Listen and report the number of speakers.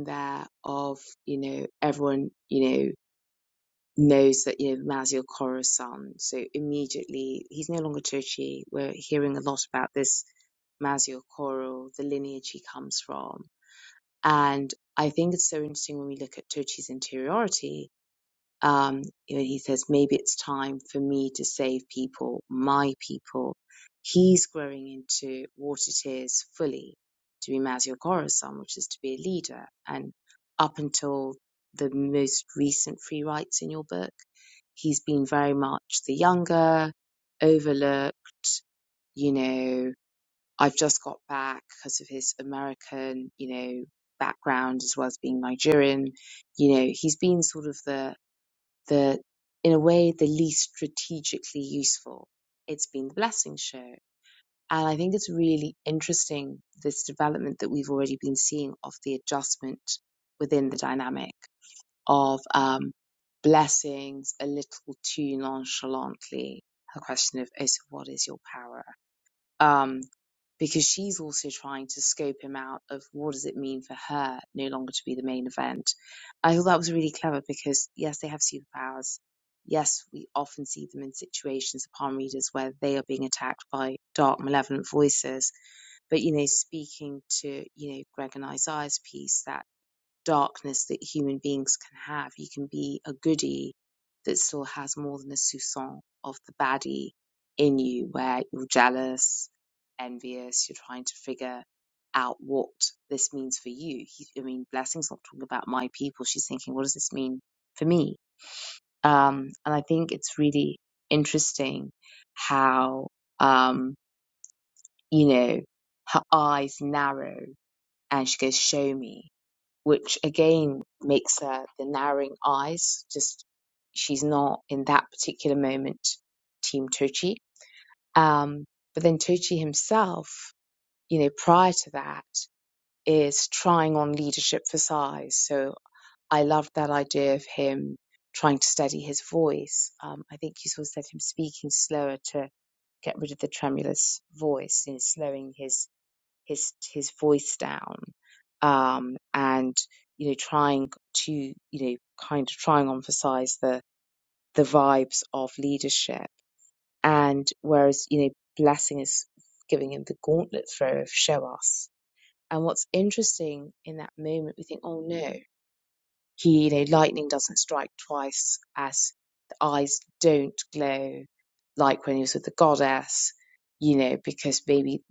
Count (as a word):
one